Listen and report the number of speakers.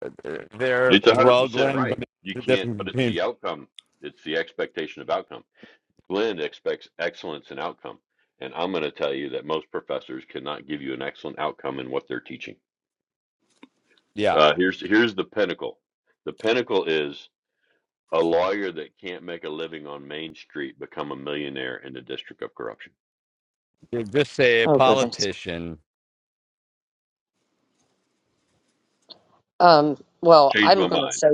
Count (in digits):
3